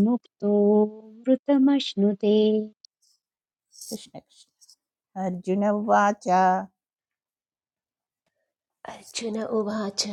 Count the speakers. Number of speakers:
three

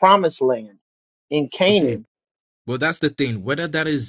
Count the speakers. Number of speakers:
two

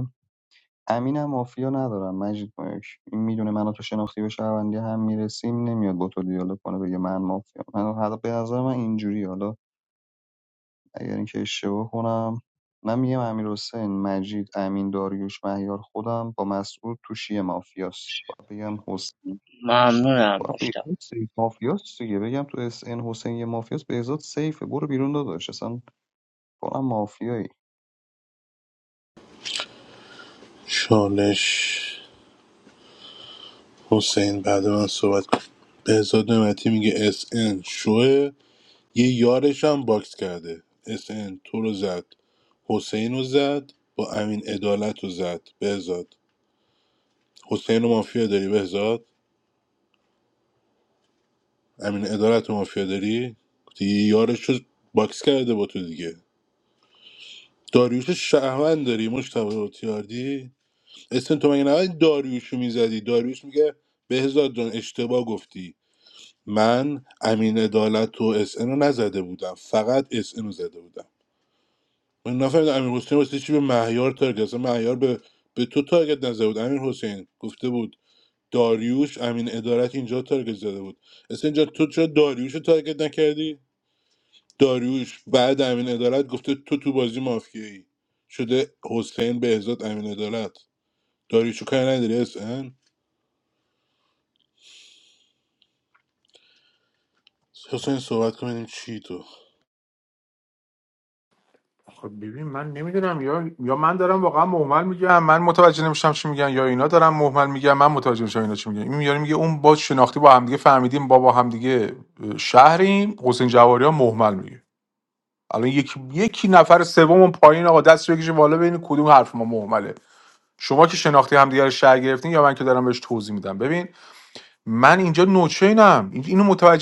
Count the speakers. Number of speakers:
four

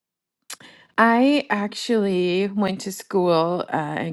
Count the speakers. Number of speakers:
one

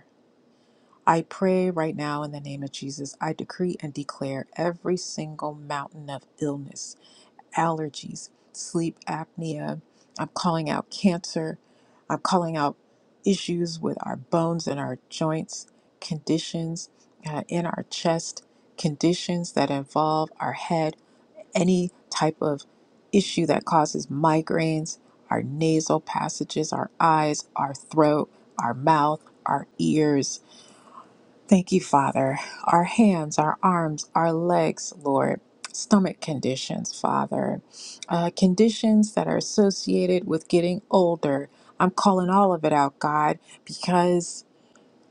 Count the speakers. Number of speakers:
one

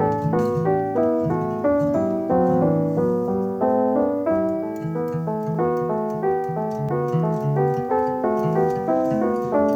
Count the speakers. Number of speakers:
zero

